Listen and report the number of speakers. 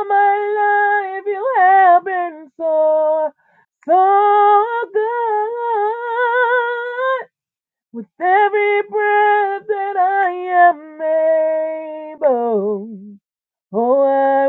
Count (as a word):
one